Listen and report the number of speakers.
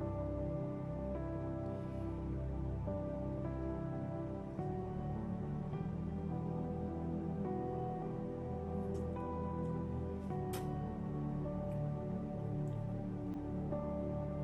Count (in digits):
0